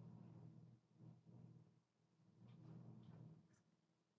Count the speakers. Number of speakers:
zero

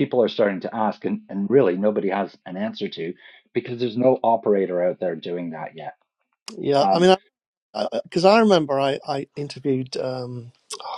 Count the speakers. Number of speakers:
two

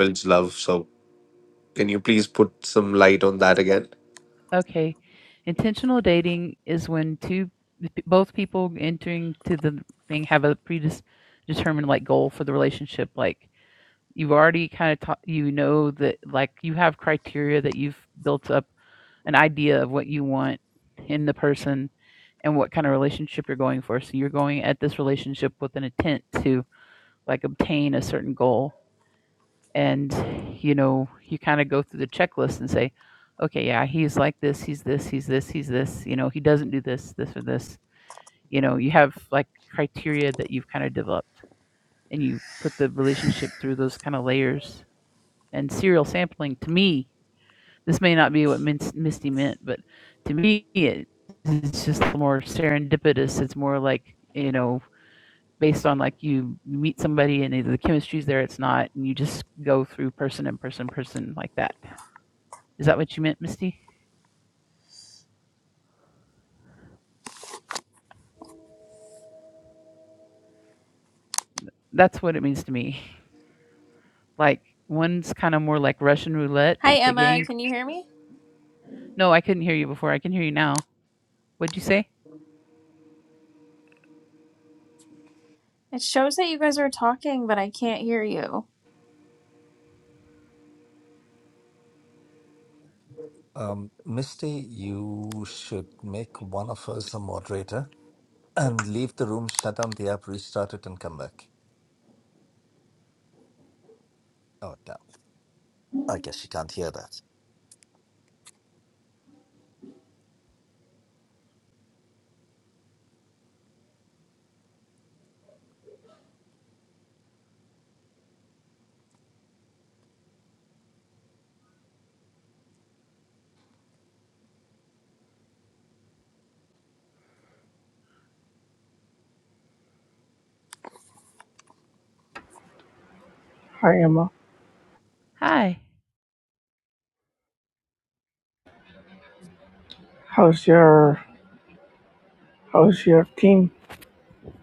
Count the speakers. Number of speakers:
five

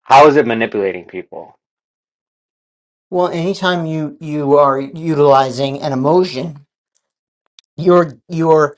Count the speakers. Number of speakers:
two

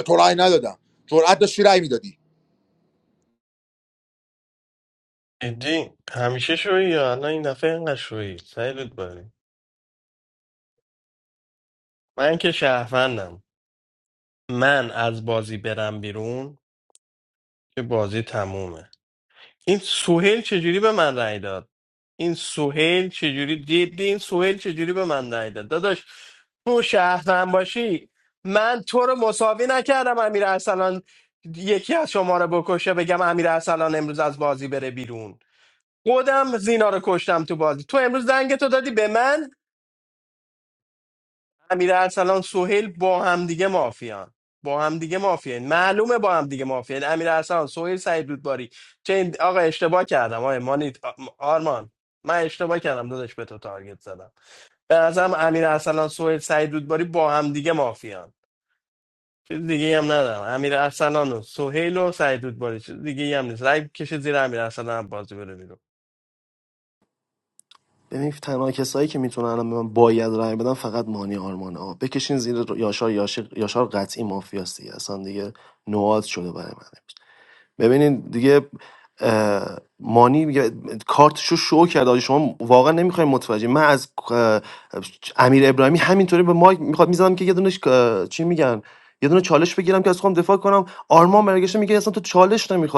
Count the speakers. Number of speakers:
three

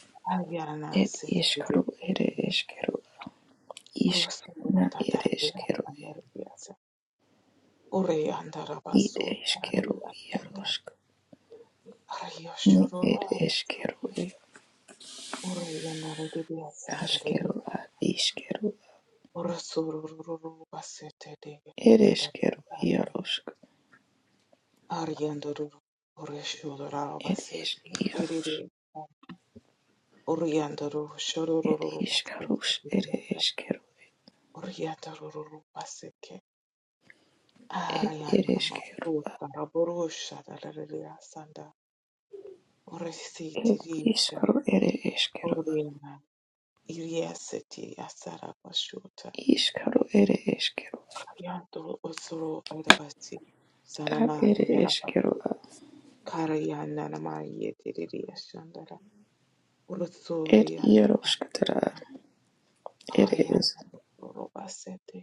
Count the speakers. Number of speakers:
two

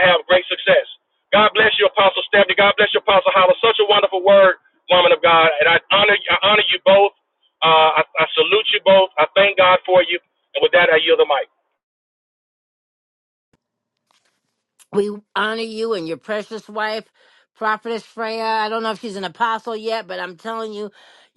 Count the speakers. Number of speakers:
two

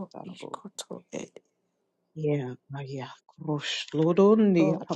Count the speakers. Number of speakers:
two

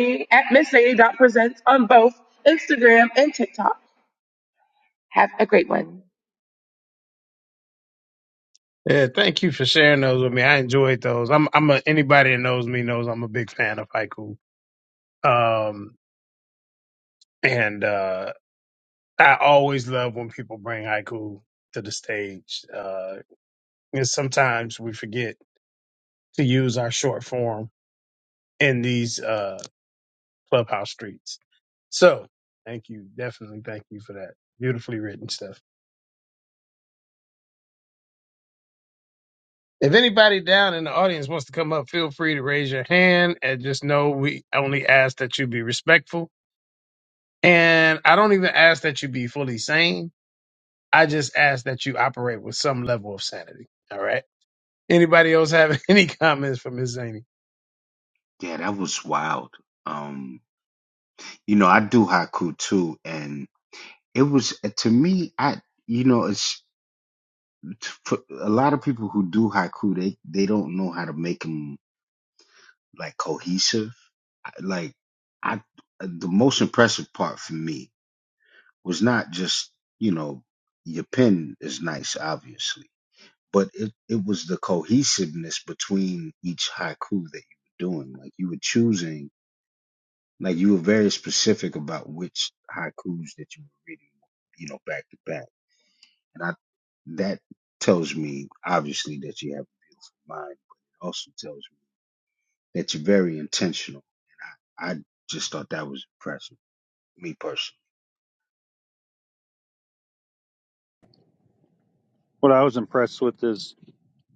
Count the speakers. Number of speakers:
four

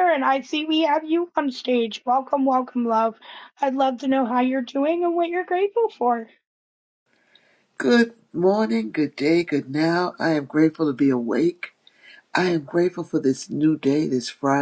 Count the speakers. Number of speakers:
two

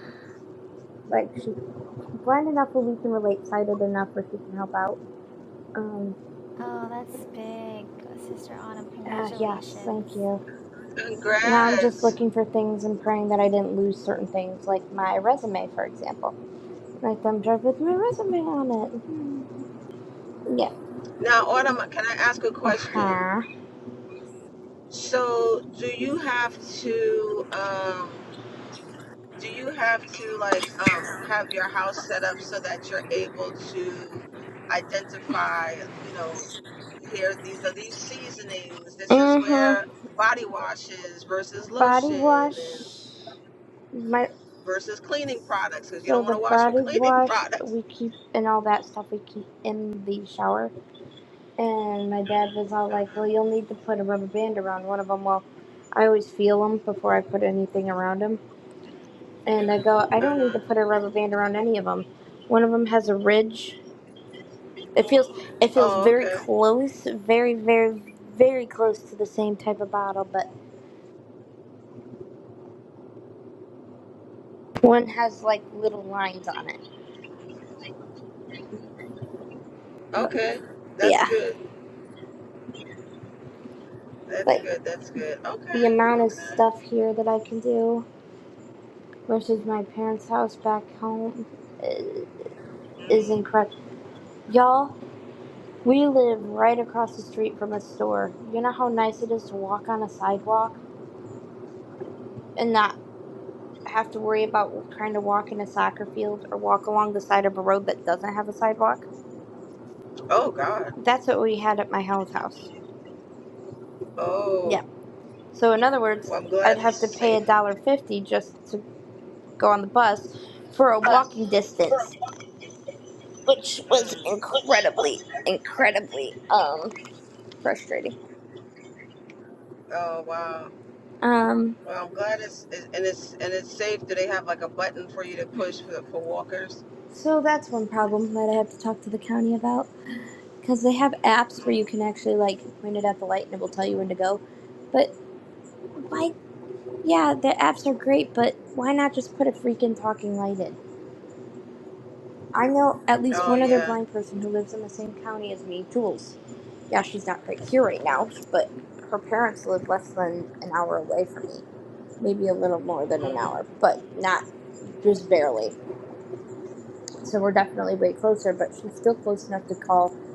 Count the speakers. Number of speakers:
three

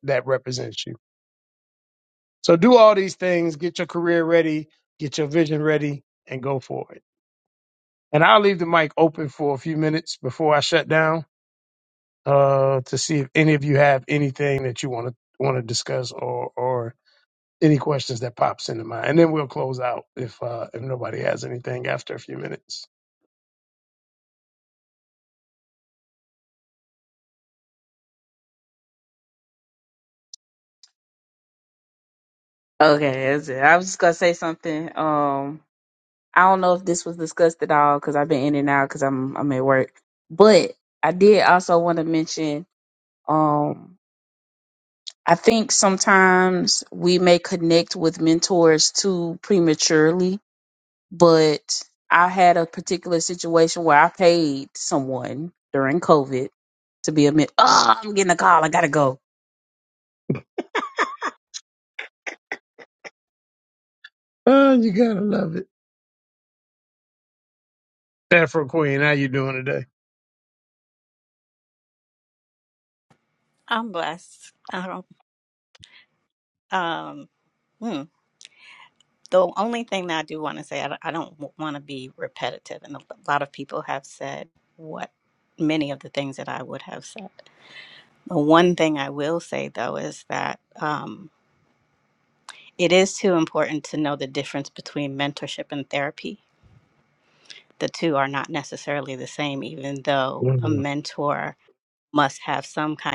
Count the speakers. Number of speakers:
three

